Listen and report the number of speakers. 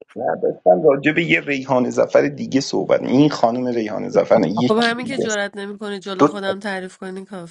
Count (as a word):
two